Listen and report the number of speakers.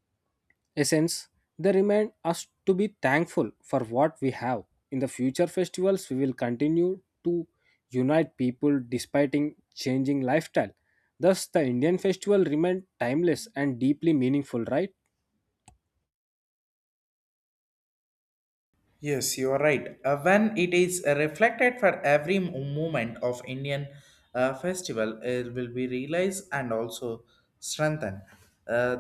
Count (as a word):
two